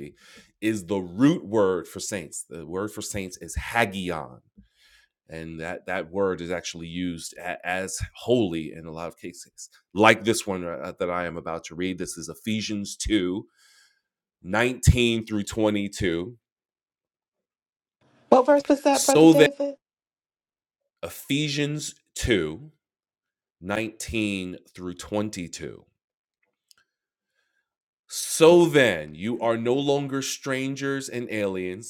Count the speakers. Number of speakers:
2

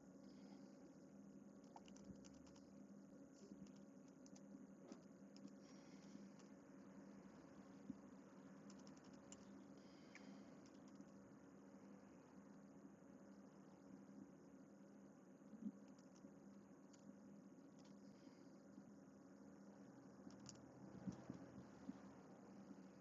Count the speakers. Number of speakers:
0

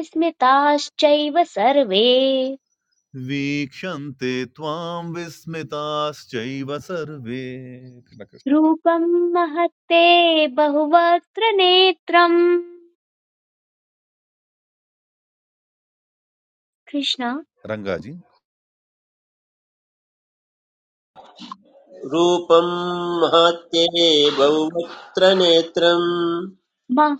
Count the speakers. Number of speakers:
3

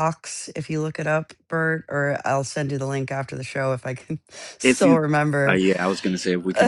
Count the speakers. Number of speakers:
2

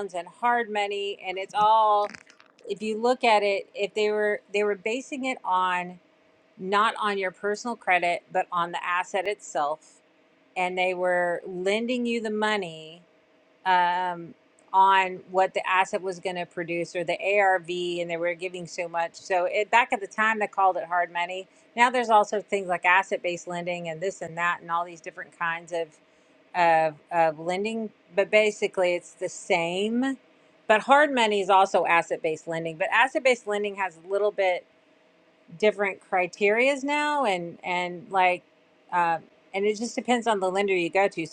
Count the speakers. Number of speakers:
1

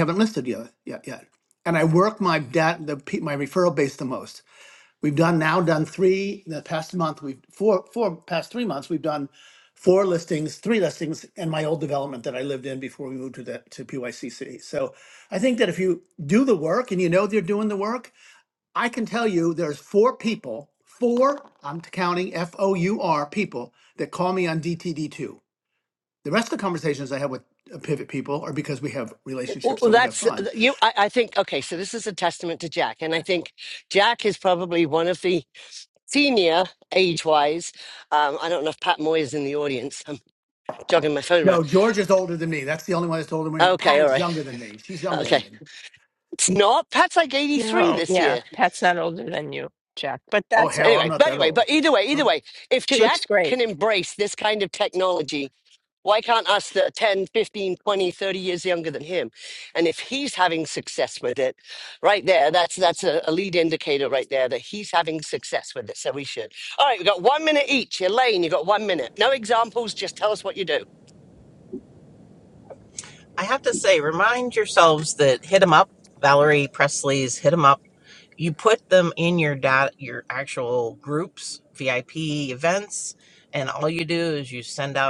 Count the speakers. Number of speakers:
4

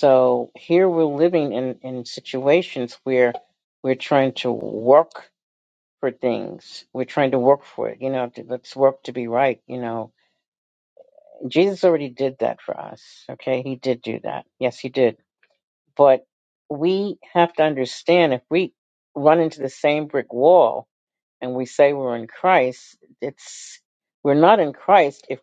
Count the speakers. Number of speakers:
1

